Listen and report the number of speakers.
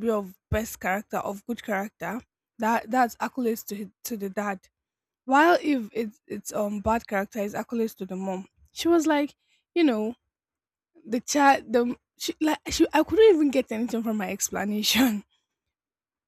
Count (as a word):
one